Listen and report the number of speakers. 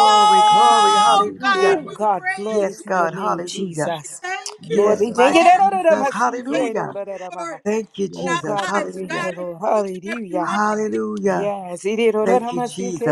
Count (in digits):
3